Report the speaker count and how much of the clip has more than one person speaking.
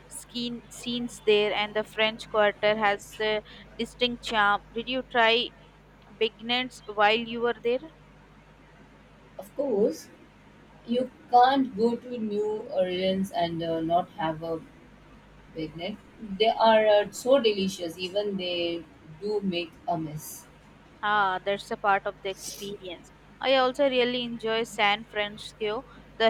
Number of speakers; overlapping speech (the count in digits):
2, no overlap